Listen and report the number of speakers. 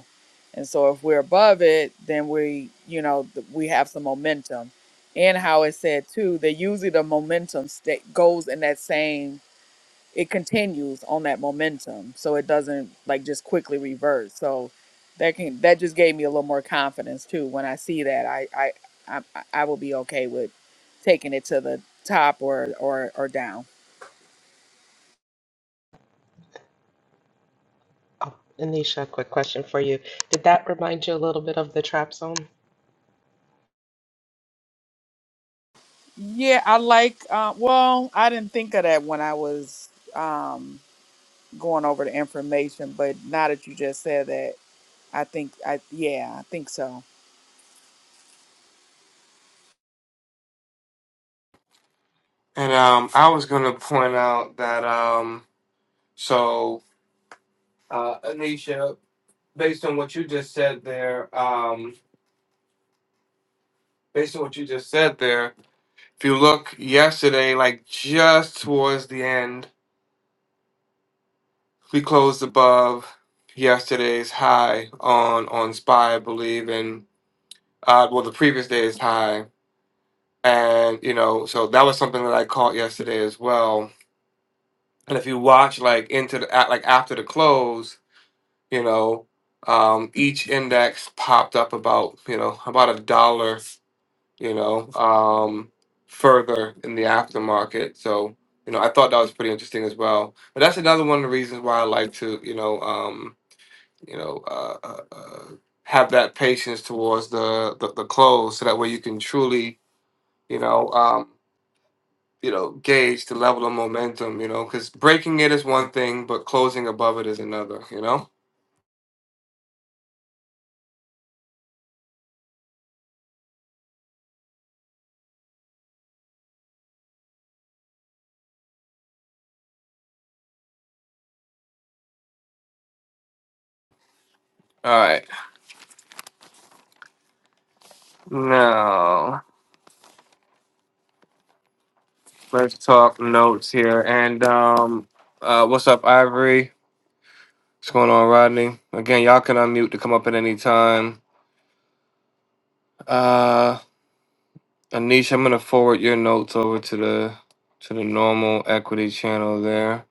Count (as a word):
three